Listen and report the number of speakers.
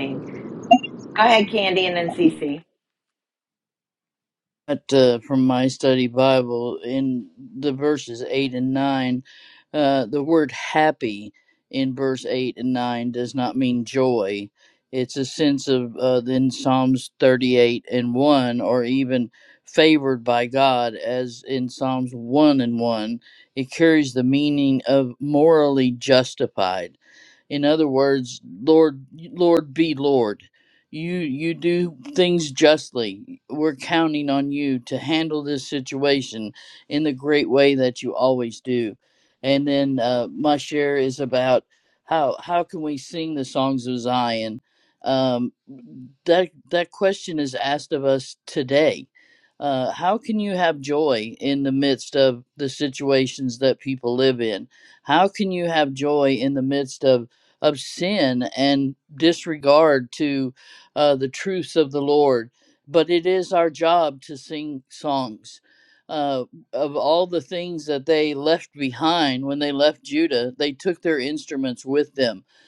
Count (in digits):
2